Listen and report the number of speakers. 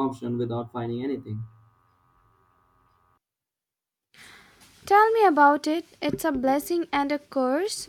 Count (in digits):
2